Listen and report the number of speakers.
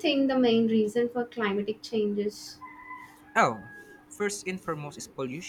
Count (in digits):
2